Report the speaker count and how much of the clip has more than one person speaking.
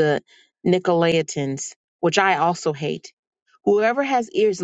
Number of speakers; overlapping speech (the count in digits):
1, no overlap